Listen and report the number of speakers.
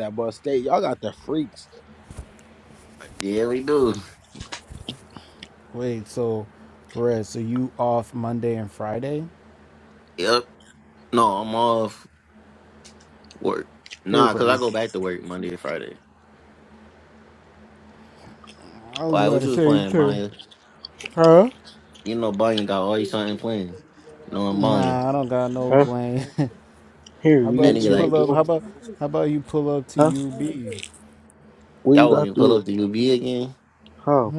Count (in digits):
3